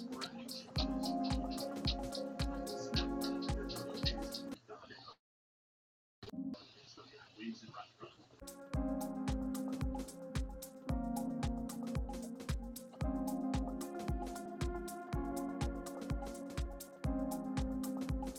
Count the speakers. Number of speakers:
zero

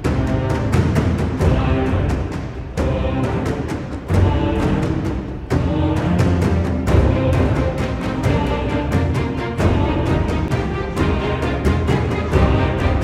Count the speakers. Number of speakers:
zero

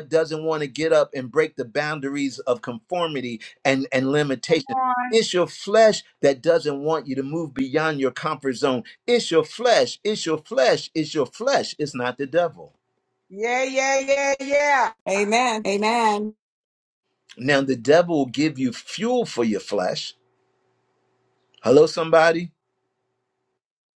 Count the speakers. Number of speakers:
three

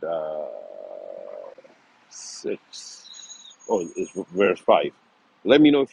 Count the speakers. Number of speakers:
one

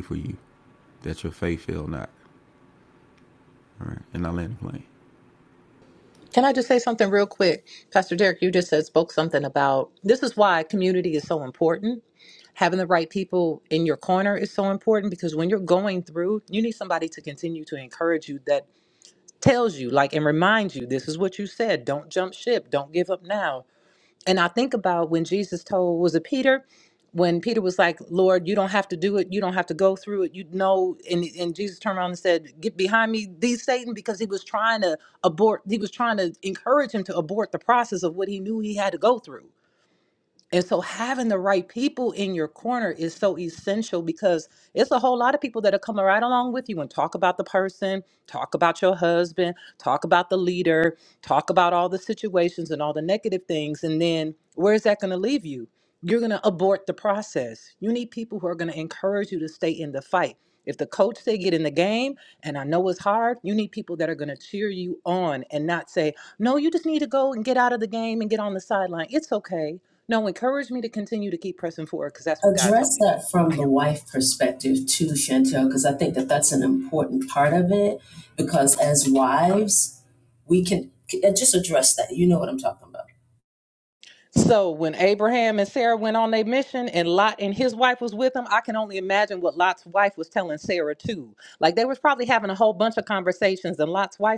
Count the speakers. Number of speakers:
three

